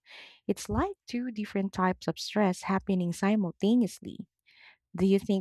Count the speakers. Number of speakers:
1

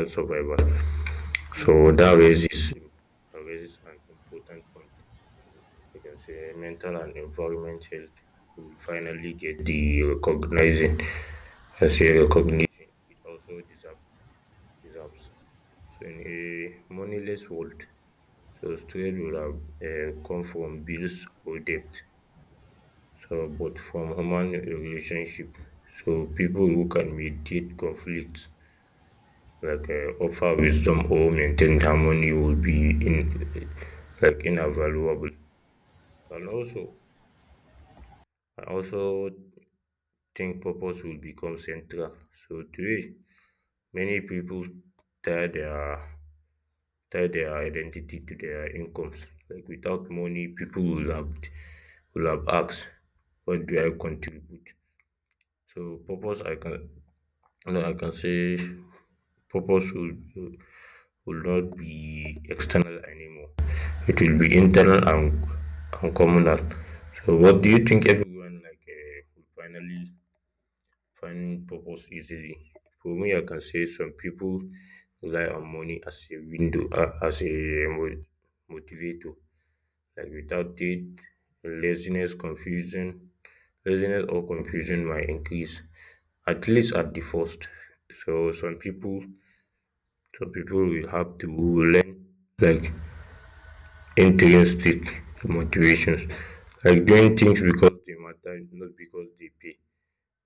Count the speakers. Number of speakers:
1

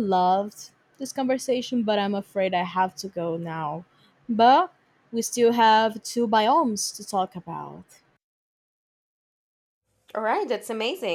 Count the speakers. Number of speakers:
2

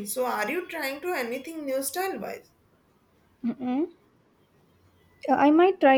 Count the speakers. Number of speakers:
2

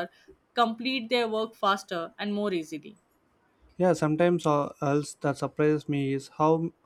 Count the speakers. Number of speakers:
2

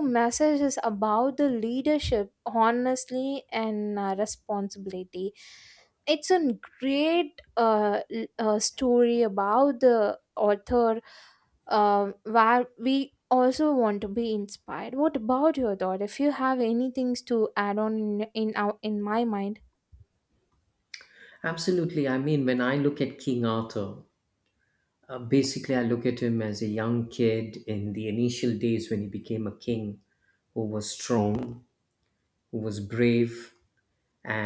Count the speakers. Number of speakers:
2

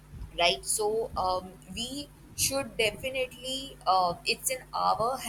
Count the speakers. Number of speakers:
1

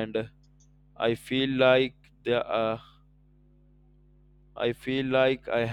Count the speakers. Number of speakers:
1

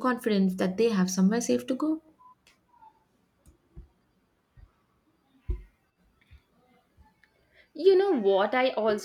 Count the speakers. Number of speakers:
2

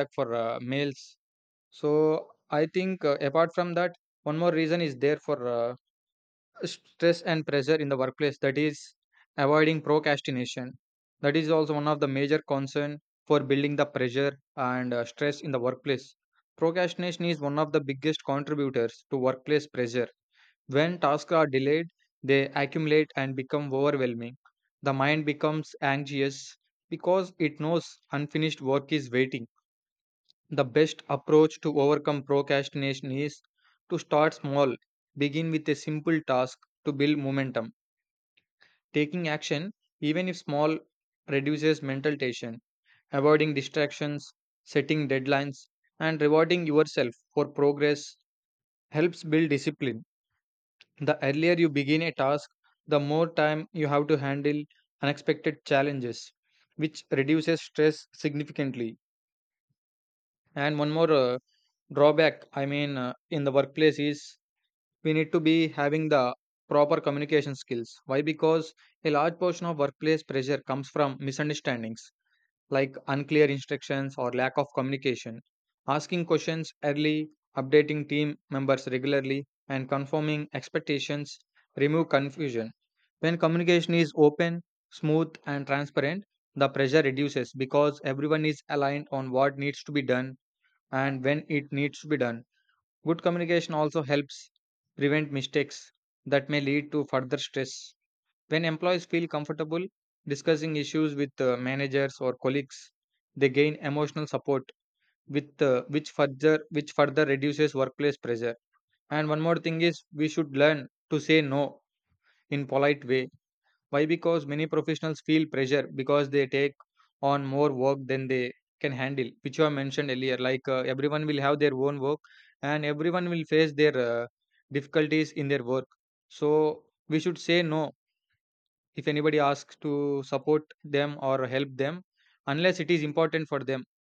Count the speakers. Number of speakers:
1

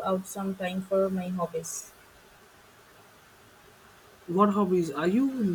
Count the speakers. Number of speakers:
2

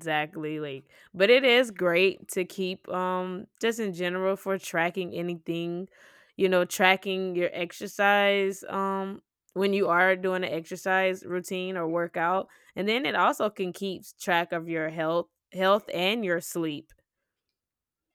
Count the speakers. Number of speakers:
1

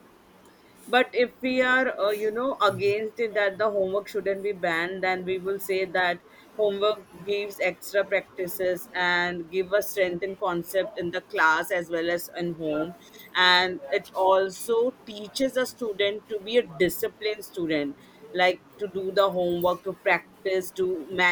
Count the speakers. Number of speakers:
1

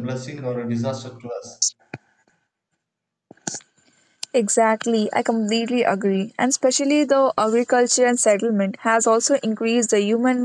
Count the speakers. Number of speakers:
2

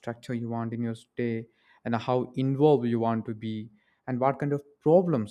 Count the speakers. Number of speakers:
1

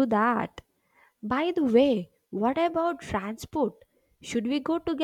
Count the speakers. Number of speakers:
1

